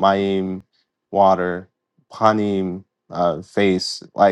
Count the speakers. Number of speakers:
1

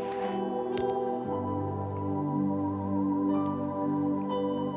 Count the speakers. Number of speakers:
0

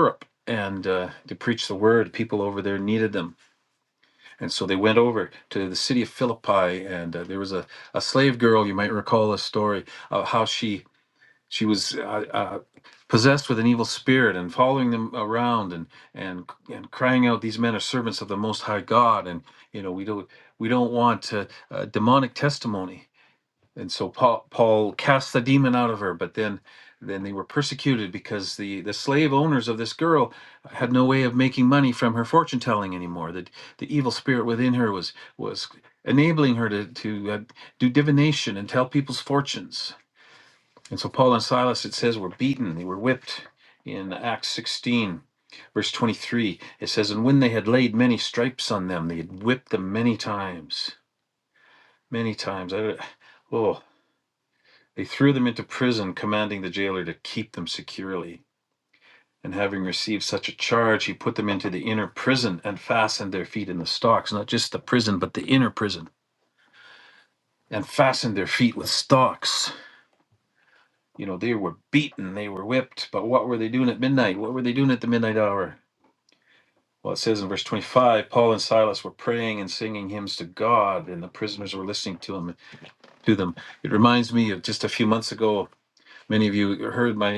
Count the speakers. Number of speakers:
1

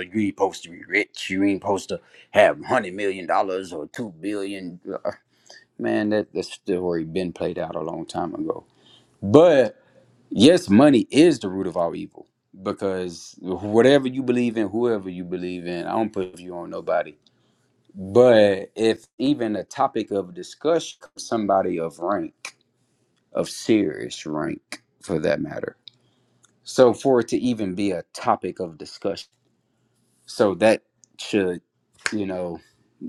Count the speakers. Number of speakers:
1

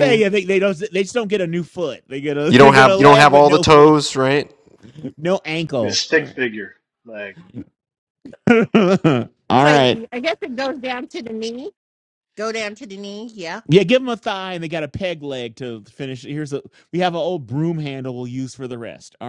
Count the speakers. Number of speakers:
4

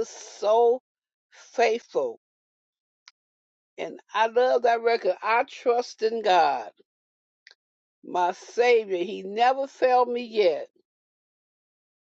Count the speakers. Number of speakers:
1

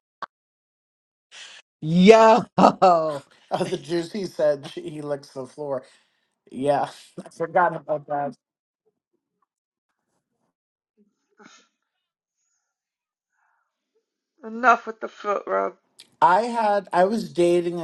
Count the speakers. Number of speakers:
3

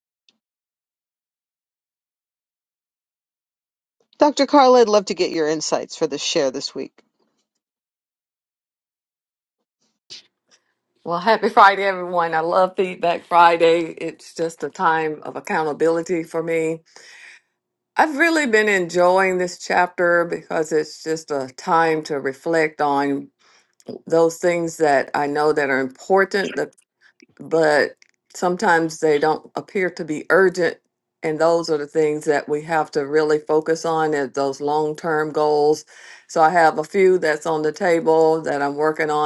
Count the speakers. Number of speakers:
2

